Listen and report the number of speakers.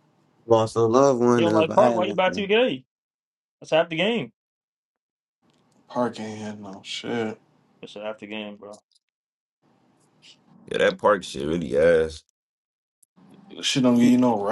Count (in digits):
3